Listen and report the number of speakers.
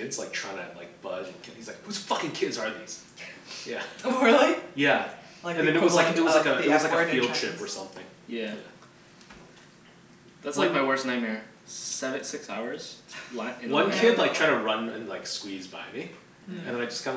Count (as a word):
three